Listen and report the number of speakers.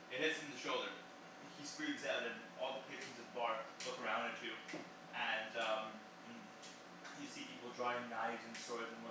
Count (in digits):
1